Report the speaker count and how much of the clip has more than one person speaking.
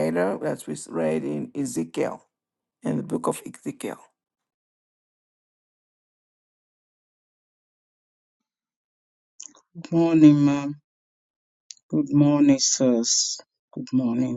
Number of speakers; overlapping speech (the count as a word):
two, no overlap